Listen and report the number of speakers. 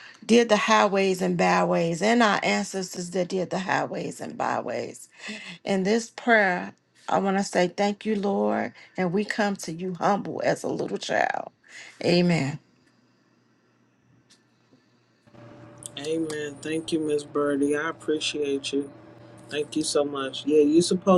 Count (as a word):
two